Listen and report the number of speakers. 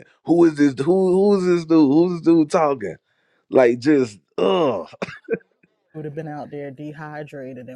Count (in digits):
2